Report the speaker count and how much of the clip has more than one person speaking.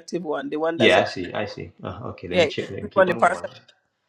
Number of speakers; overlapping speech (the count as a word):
two, about 27%